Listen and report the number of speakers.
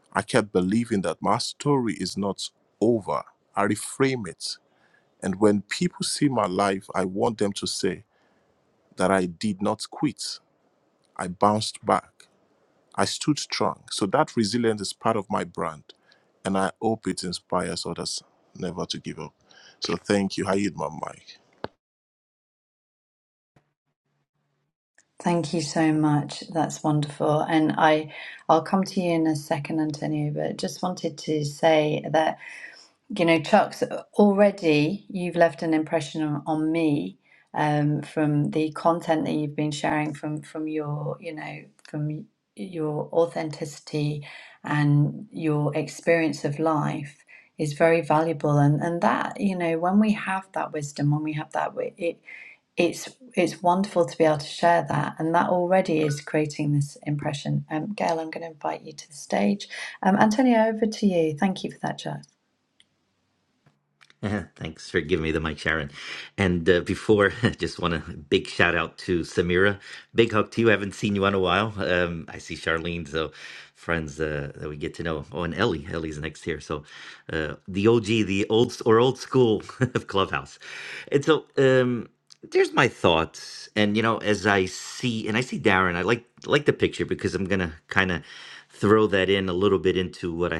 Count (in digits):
3